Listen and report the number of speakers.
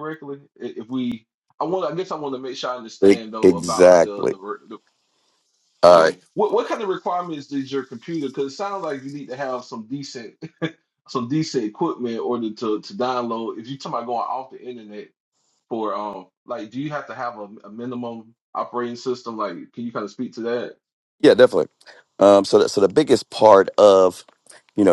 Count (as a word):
two